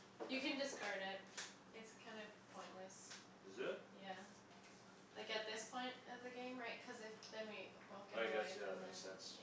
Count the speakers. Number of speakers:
2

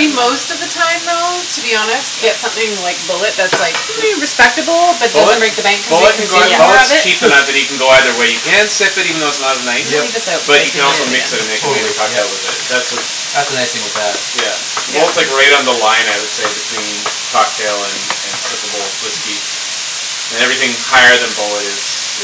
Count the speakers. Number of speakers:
3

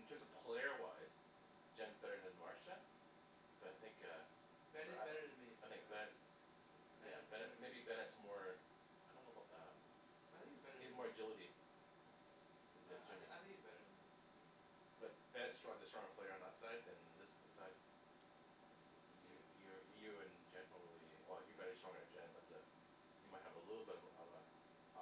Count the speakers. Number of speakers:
2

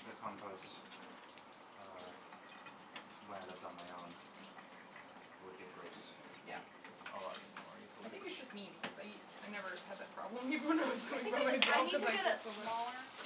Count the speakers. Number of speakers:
3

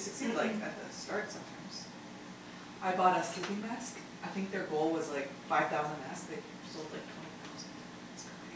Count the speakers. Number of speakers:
1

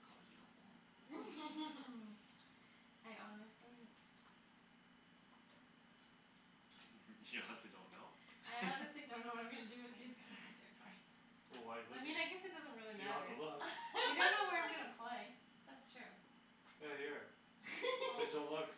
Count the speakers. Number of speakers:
4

